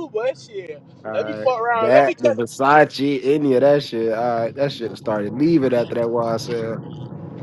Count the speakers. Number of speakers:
2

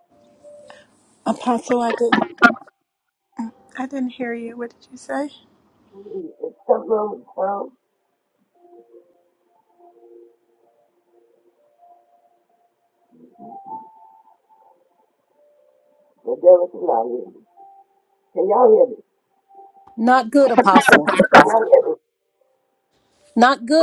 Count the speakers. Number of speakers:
3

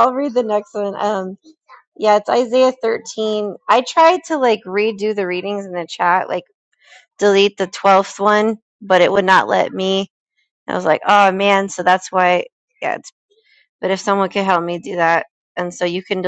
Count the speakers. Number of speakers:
1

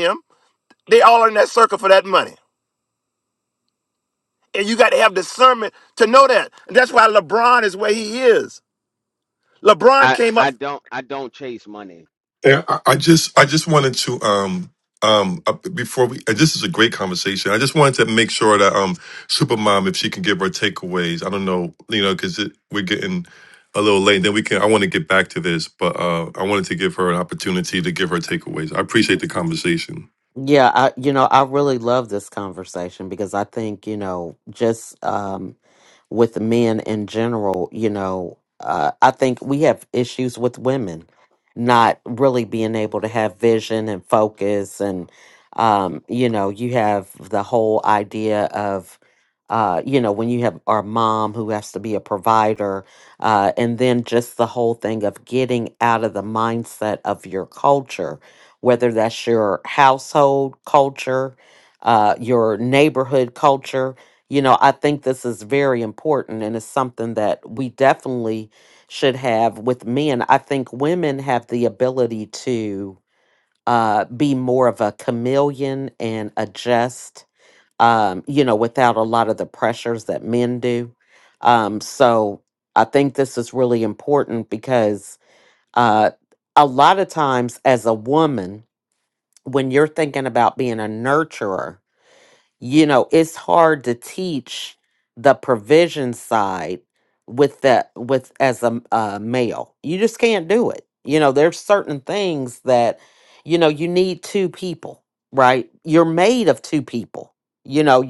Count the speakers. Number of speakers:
4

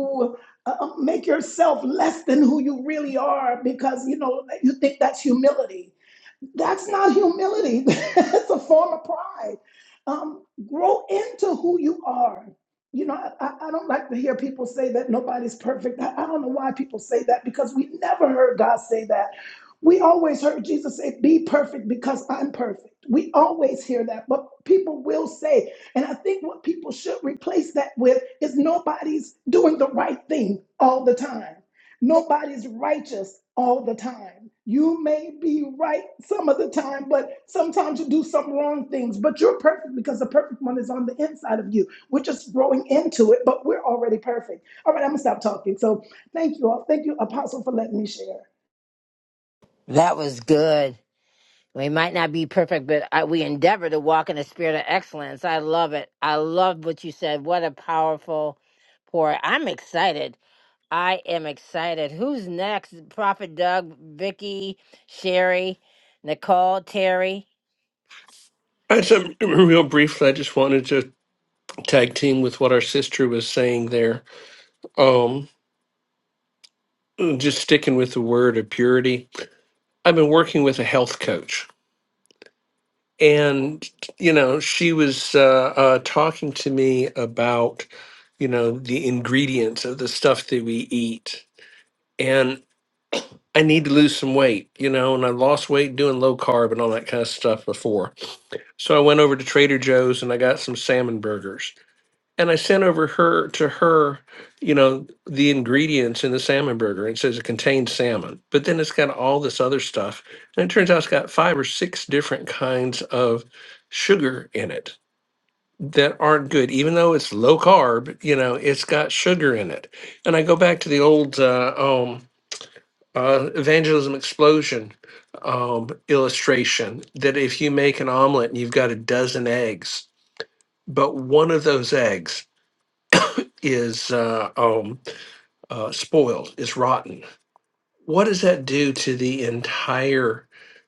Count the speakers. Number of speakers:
3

